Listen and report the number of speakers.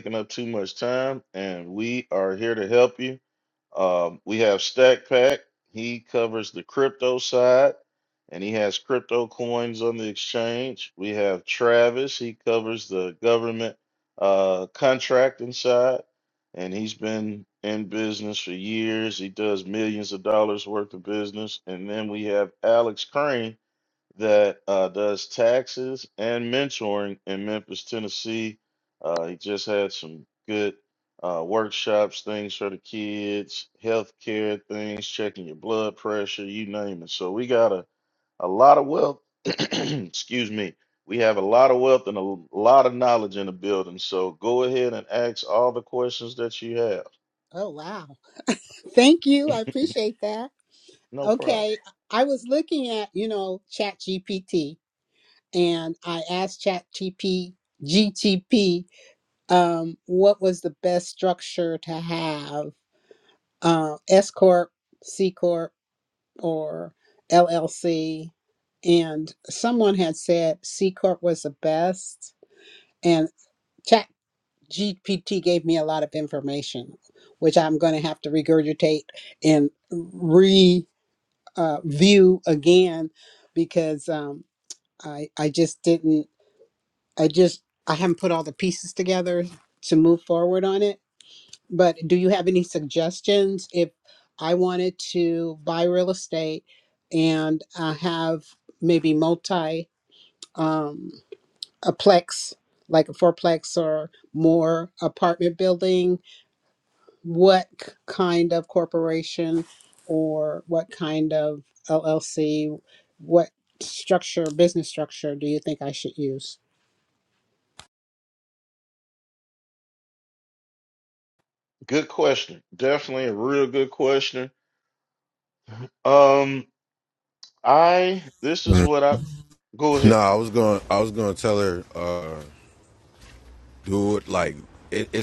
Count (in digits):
3